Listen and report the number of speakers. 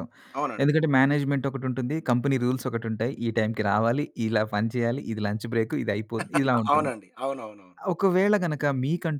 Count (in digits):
2